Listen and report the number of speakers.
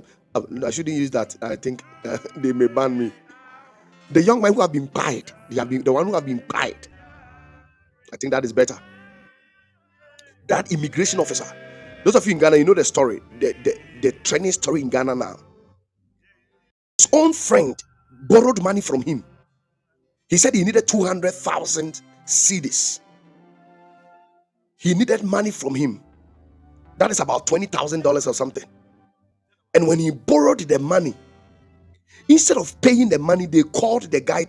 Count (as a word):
one